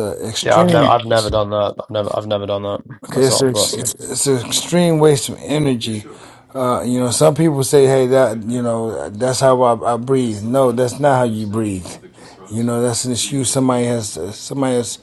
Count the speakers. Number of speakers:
two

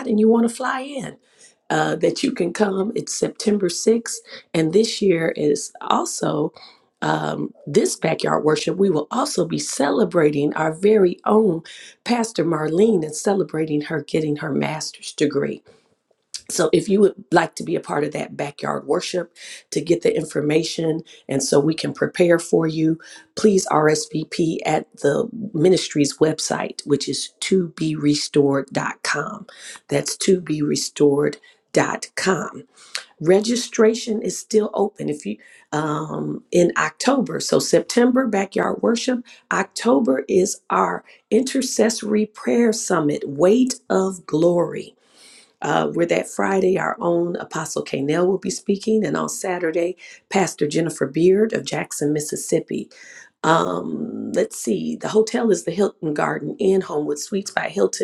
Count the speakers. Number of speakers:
one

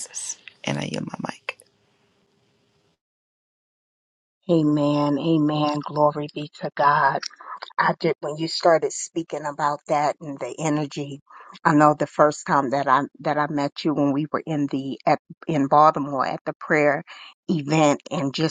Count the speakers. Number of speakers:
two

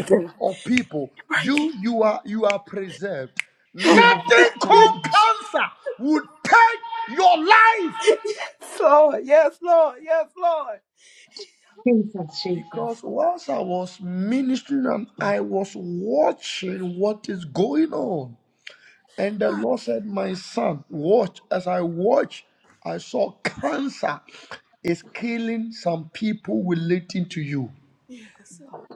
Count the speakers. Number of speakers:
three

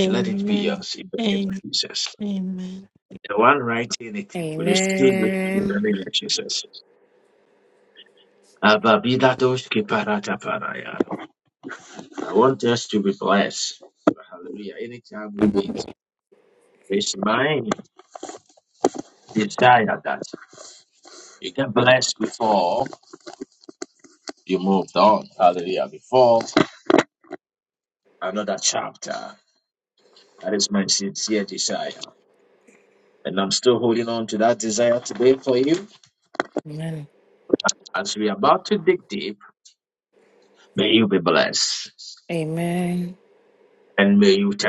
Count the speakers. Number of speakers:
three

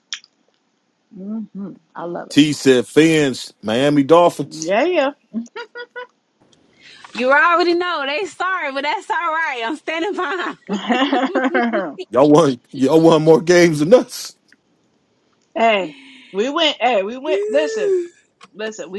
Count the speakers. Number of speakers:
three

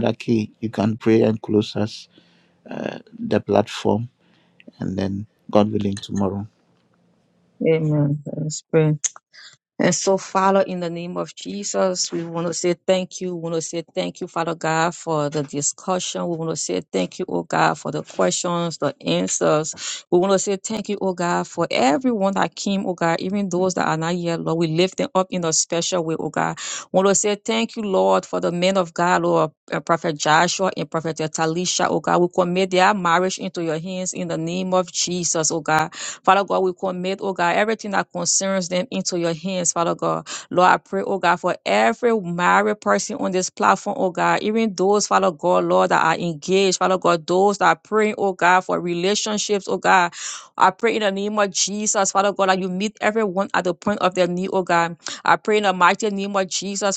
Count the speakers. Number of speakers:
two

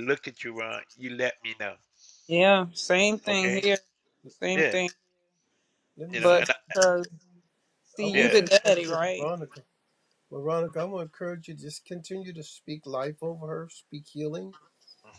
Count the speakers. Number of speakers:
three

